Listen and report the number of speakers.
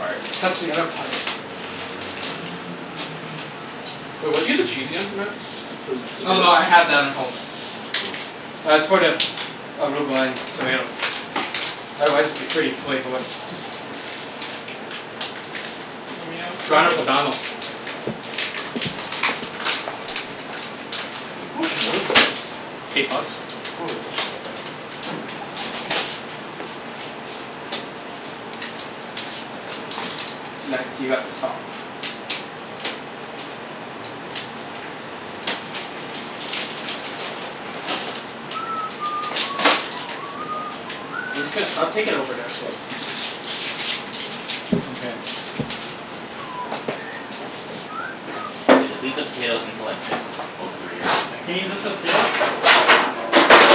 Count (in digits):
4